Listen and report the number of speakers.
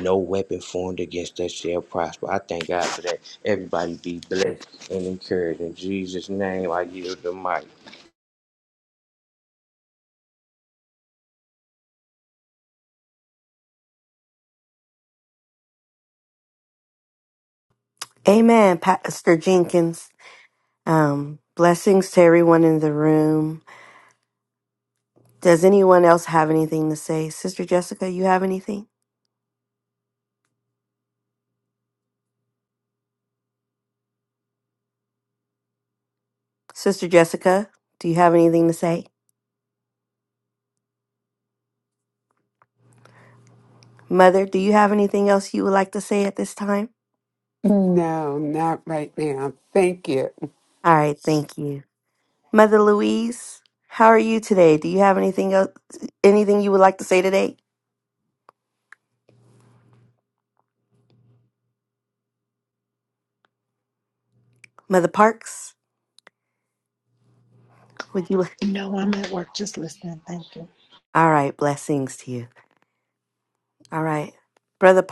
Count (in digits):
4